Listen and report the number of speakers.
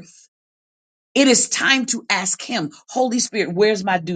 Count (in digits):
1